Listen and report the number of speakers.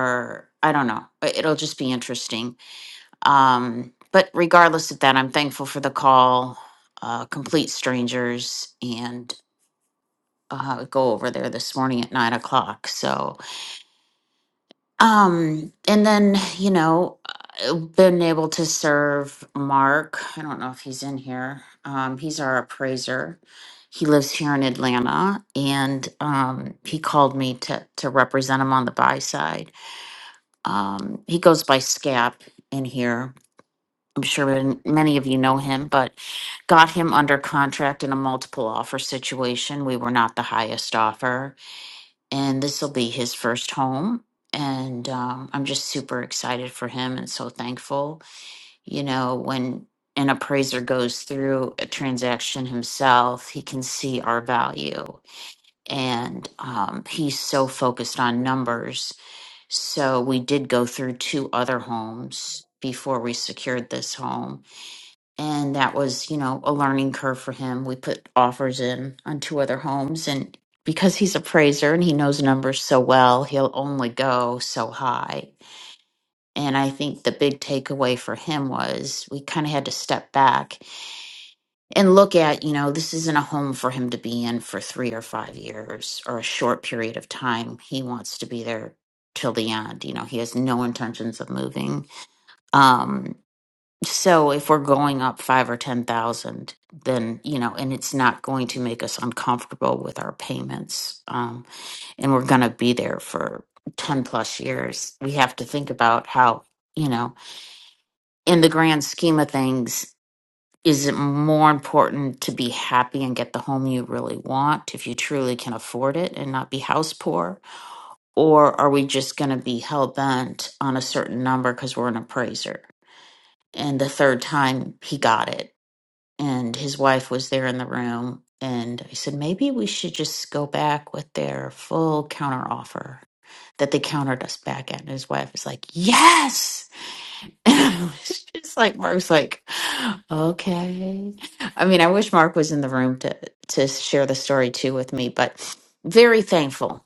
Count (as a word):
one